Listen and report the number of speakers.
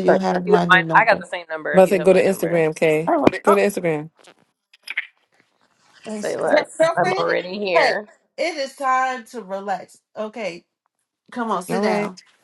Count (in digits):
3